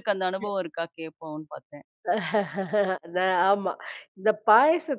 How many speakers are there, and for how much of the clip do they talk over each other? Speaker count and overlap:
2, no overlap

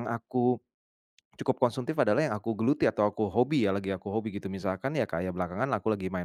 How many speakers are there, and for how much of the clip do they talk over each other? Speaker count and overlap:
1, no overlap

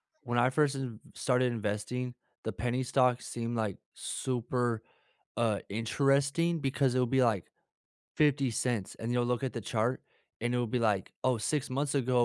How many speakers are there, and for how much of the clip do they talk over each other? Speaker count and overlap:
1, no overlap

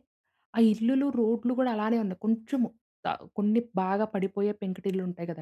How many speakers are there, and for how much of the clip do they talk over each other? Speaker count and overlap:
1, no overlap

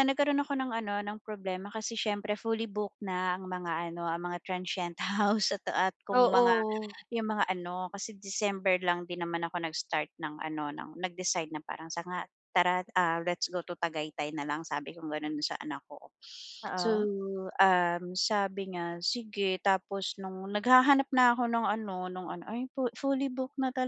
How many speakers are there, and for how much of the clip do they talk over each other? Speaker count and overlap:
2, about 3%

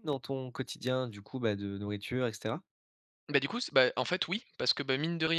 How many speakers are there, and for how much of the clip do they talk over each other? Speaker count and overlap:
2, no overlap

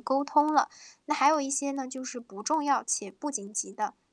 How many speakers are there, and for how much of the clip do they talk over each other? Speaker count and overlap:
1, no overlap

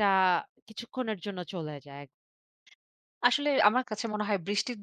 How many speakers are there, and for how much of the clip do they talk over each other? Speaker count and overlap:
2, no overlap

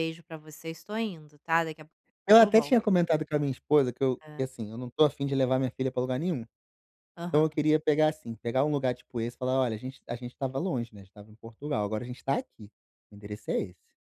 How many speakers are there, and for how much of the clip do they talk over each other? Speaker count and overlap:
2, about 5%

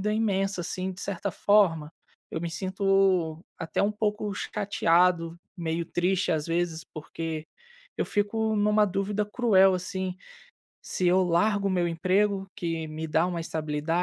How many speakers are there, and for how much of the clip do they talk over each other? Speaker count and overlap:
1, no overlap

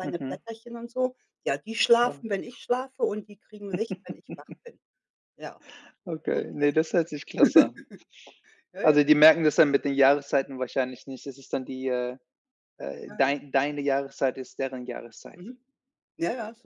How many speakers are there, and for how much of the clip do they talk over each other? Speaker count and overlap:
2, about 9%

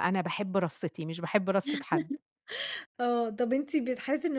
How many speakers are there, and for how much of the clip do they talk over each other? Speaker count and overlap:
2, no overlap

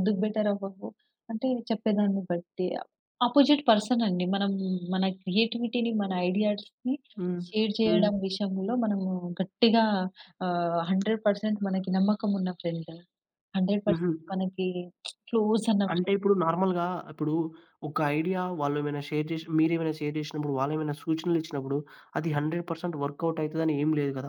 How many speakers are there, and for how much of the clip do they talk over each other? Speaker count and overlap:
2, about 2%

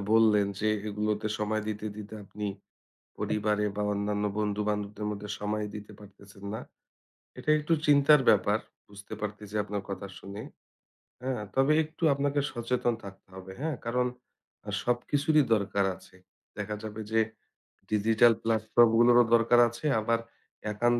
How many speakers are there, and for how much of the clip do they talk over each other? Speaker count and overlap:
1, no overlap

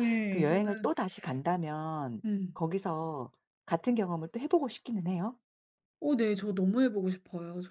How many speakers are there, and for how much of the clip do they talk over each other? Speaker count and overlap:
2, about 7%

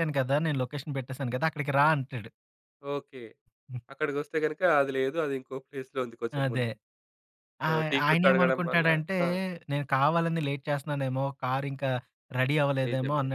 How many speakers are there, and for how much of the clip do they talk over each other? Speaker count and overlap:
2, about 17%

